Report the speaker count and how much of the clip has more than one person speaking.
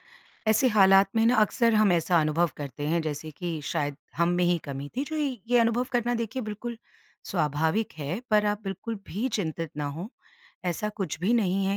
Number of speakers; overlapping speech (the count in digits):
1, no overlap